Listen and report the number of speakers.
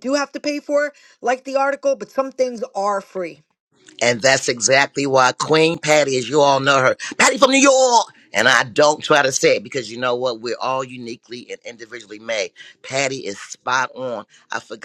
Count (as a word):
two